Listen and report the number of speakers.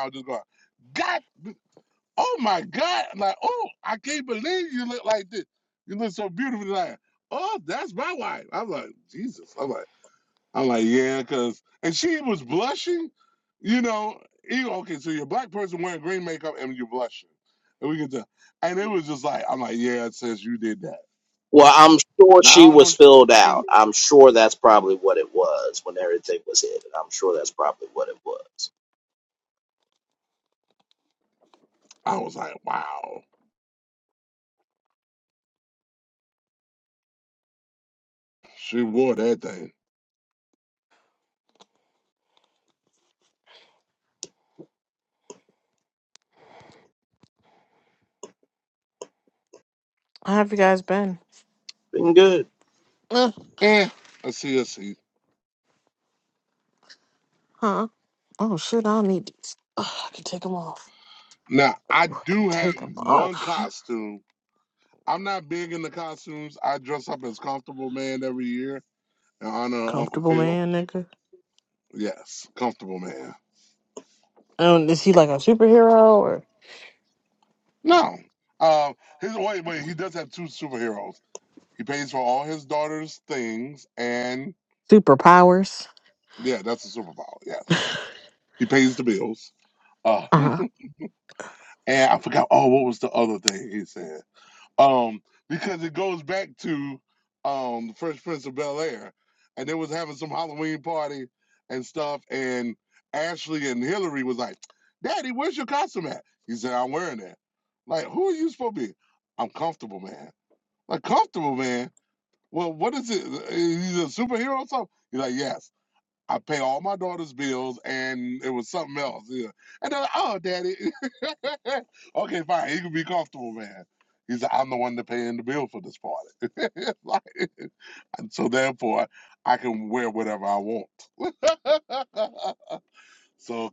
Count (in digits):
3